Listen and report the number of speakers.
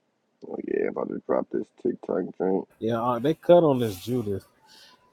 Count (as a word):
two